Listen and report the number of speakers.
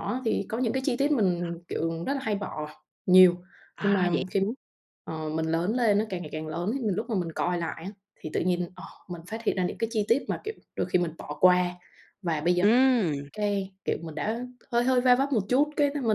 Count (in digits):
2